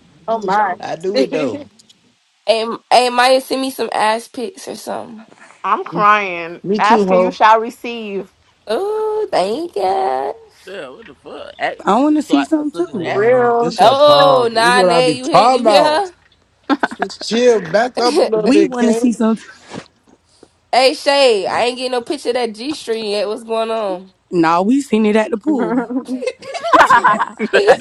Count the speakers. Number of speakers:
six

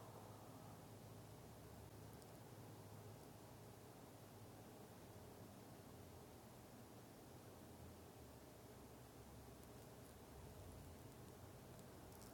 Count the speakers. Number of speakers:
zero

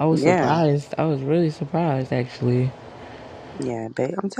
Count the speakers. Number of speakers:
two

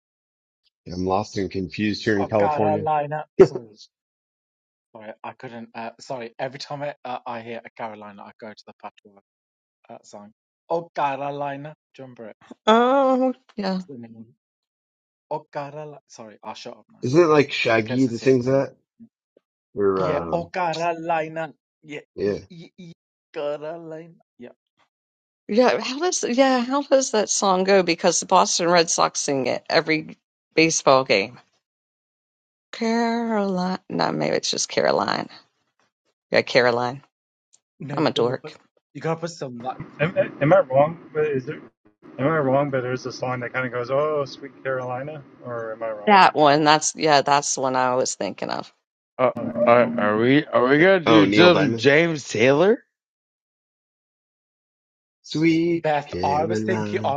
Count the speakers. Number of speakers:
five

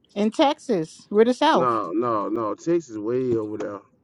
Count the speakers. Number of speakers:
two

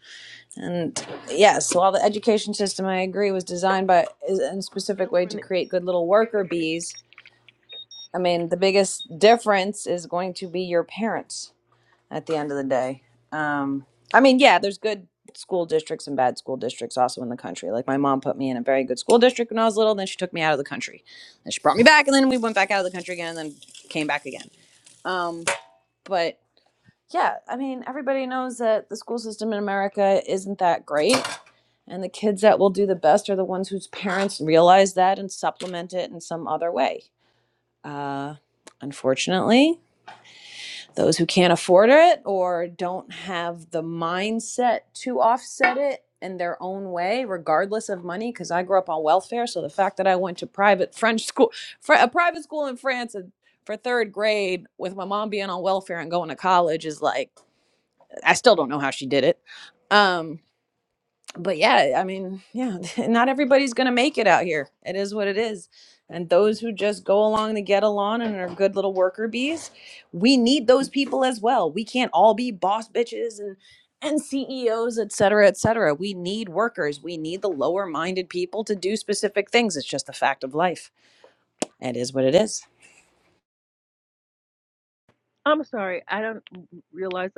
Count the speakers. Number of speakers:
two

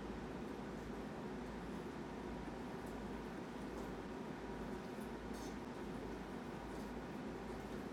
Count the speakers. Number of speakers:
zero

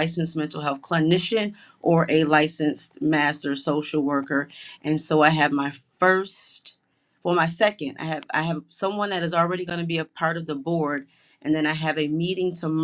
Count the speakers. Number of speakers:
one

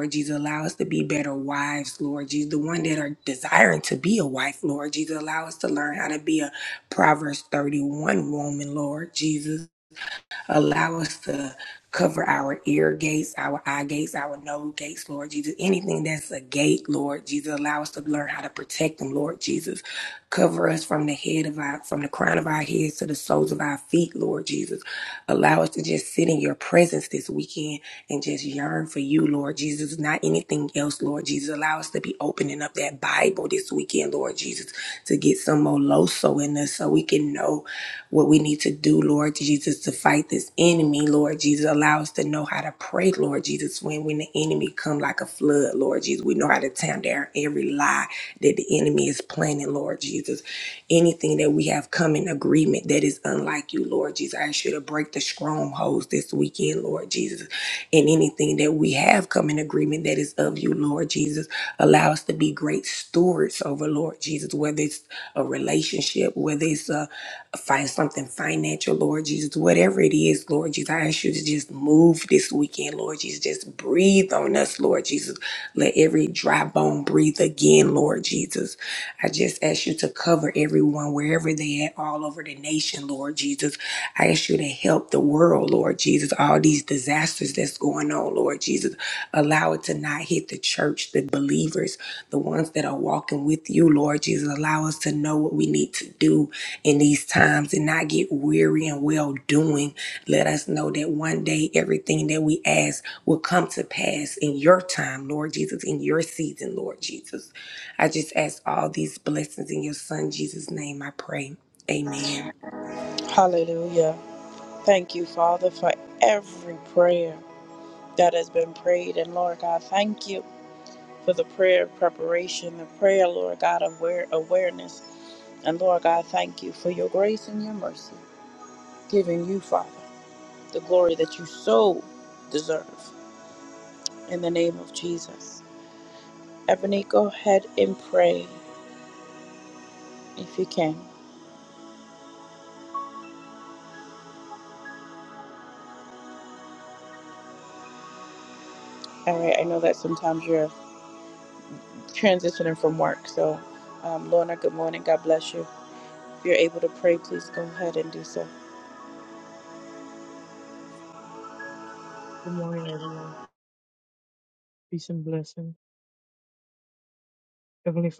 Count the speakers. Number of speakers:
three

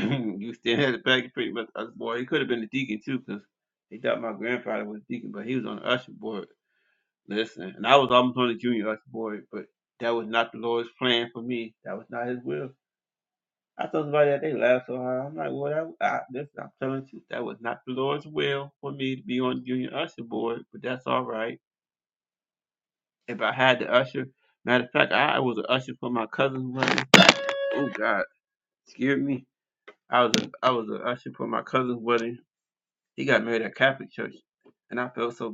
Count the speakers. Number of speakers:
one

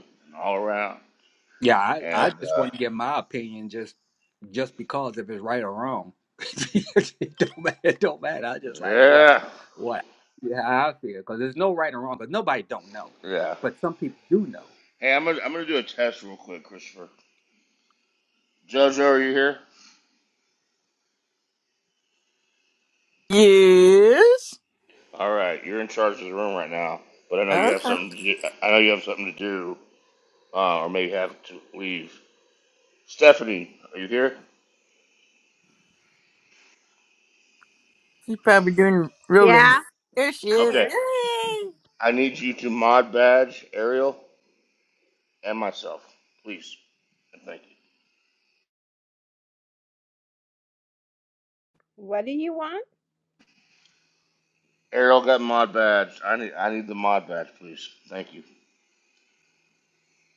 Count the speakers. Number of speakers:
four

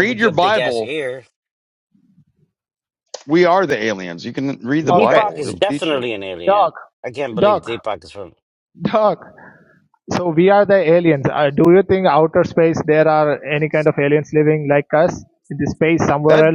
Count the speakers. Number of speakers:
three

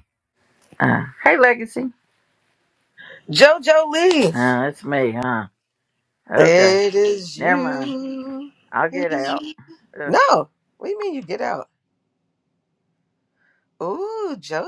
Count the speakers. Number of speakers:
two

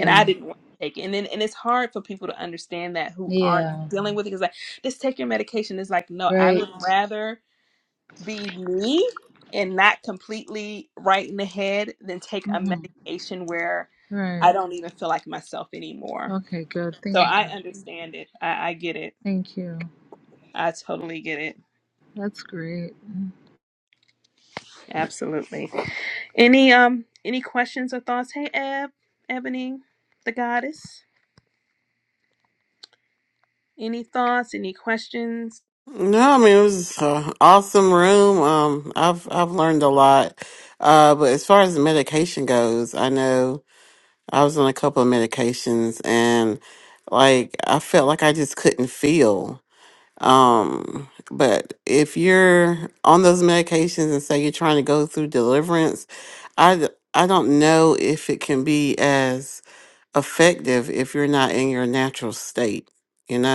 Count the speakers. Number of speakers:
three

